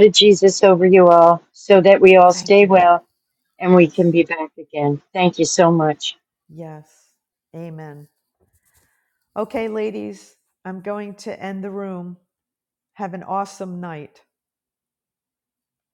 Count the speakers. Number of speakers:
two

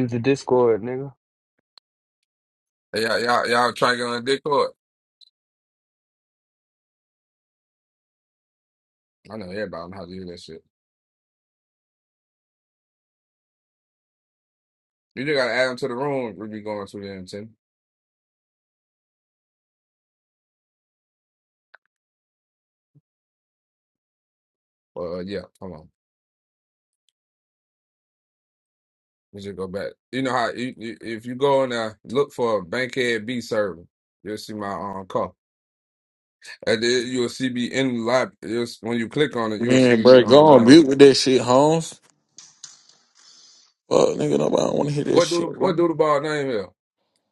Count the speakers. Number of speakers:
three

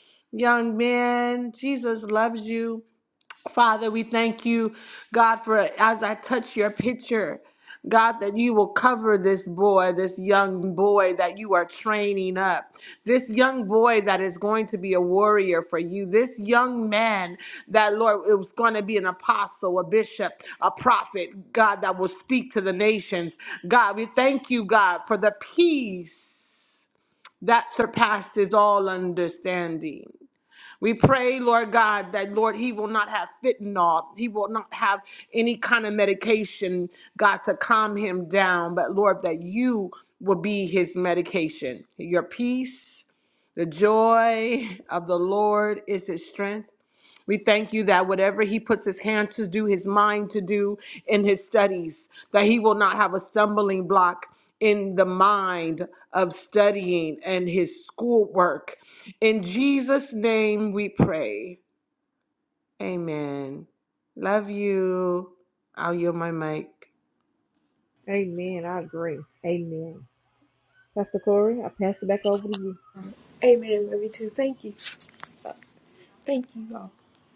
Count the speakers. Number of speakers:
three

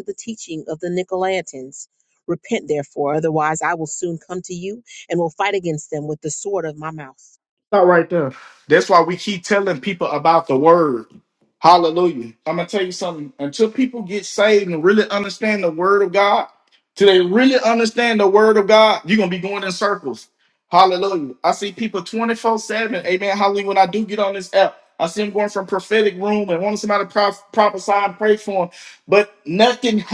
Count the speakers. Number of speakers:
two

